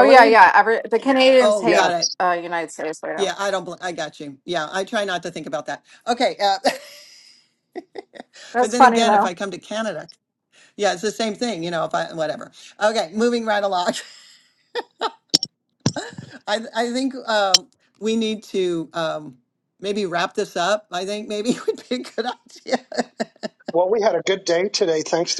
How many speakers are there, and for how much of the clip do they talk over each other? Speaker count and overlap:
three, about 7%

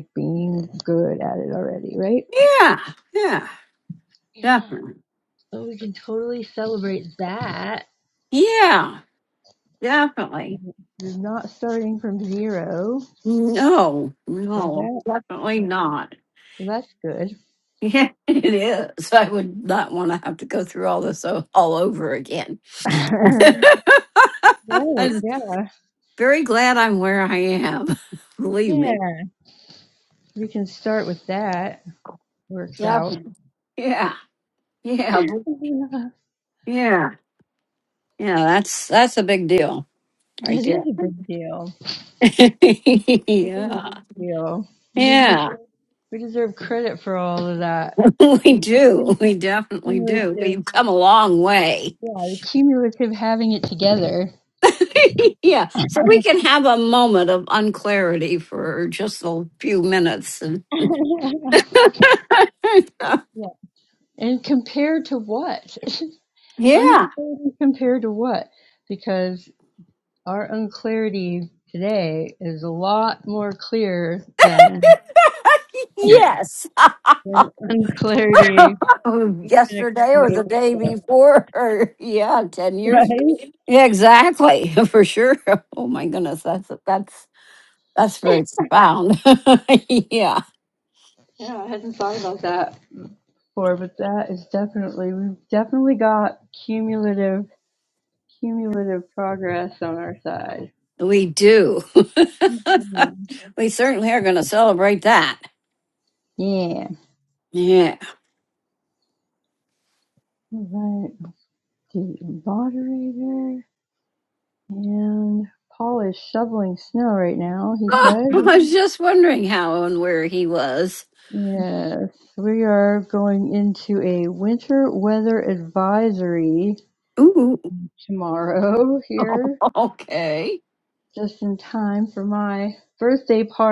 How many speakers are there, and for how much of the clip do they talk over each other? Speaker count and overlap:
two, about 4%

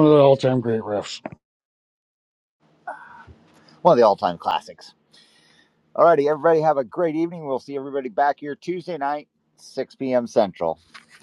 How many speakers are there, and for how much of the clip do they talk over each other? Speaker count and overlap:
two, no overlap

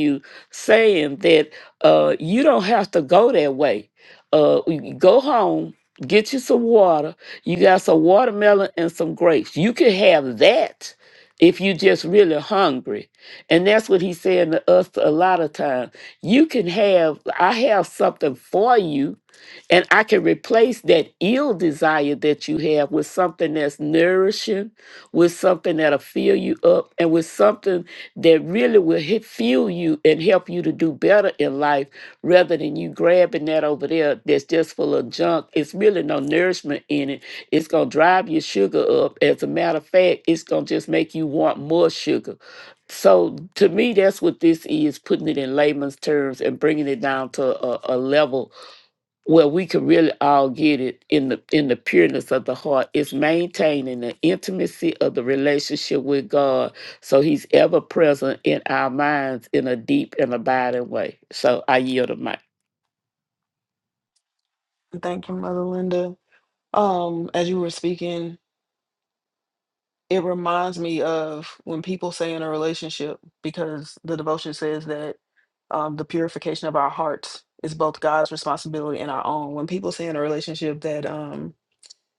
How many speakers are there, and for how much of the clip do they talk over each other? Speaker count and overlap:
two, no overlap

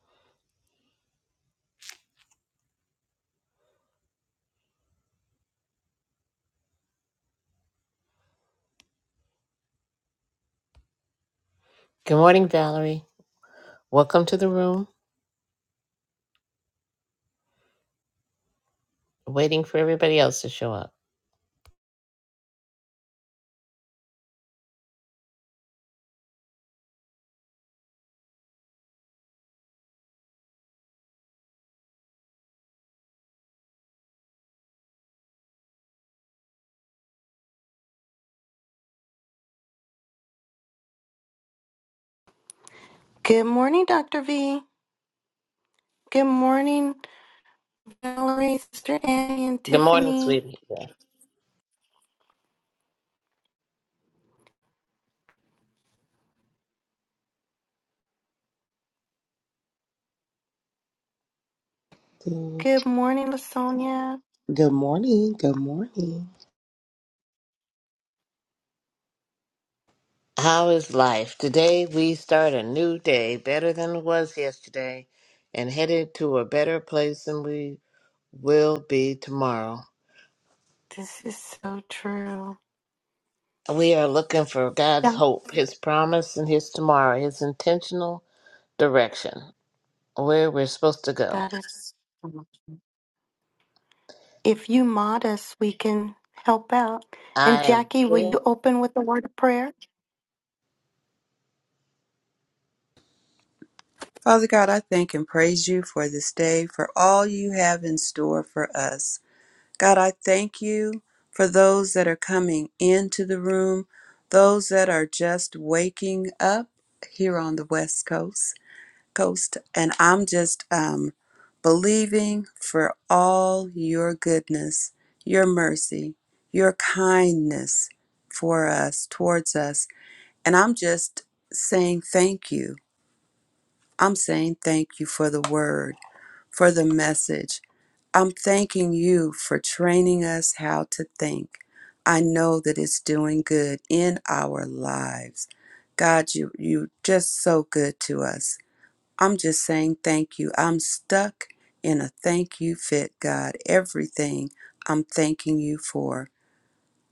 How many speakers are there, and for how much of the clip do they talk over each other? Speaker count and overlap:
four, about 1%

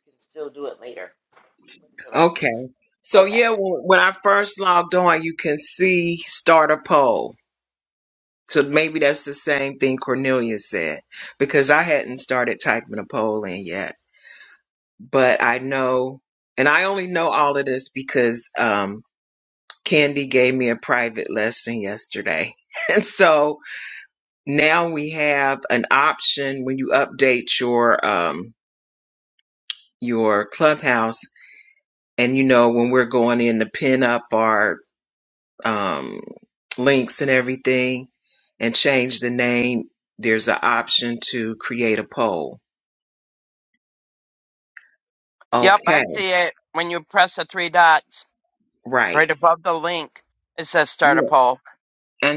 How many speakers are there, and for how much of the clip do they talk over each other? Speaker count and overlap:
three, about 2%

